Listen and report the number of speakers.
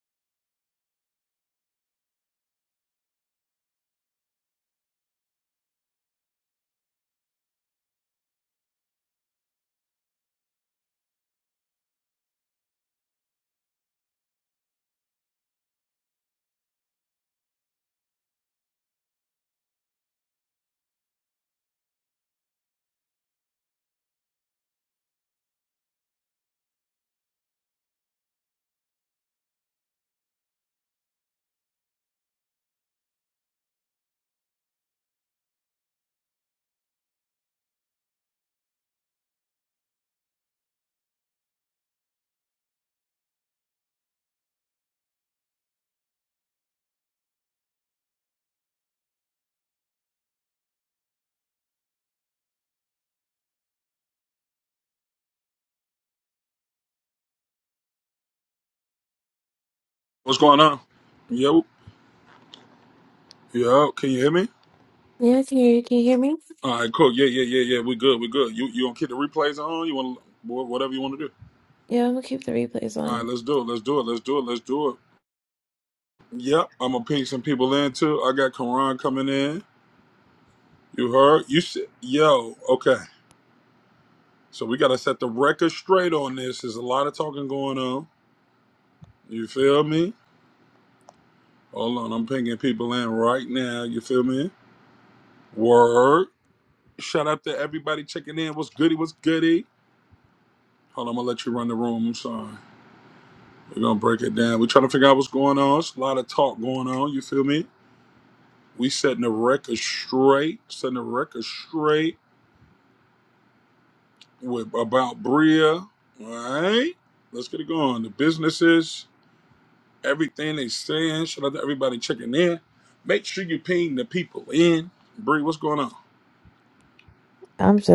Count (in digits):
2